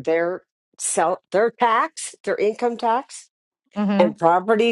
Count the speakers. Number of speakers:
one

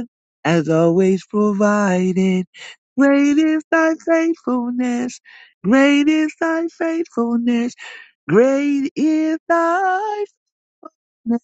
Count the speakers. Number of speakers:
one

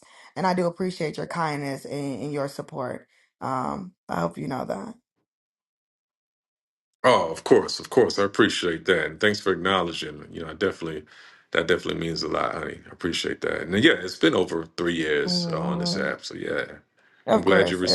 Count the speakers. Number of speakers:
two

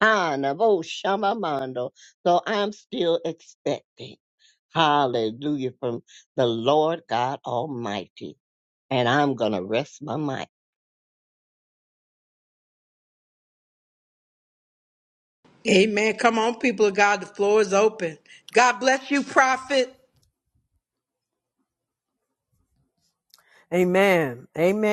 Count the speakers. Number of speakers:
three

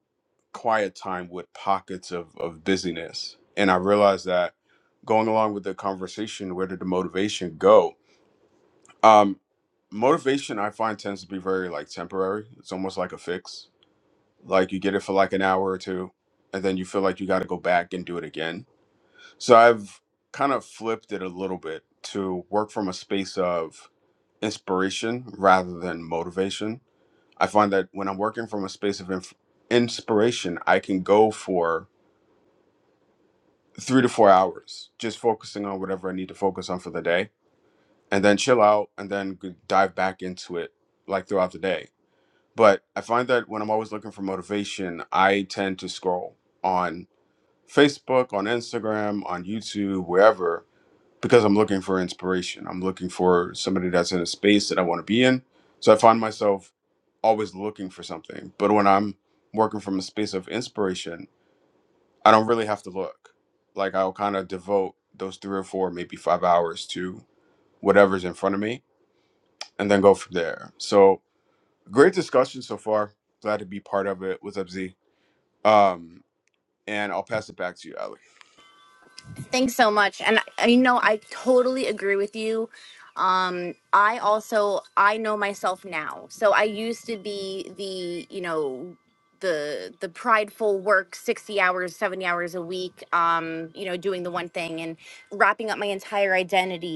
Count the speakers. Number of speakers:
two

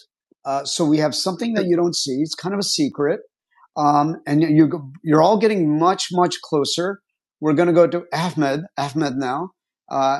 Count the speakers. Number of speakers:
one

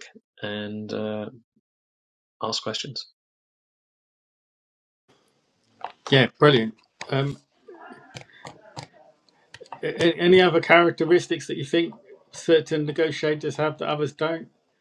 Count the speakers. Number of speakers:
two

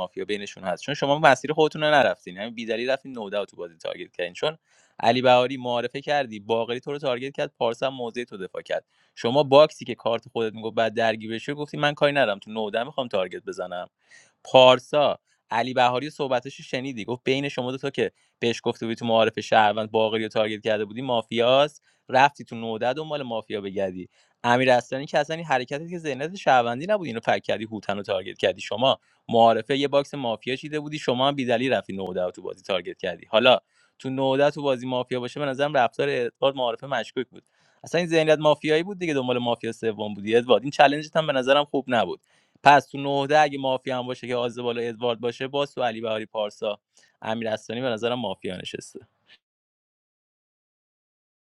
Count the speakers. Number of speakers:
one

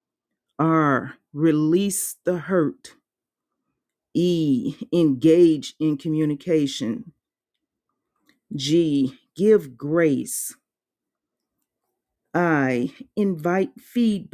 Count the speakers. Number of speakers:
one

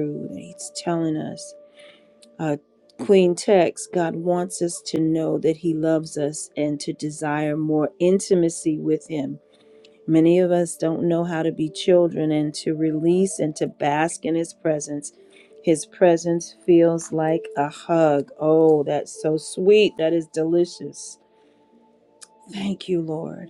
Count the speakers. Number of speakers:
one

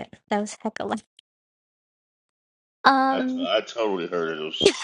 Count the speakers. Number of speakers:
two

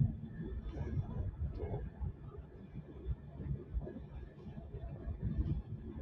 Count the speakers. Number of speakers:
zero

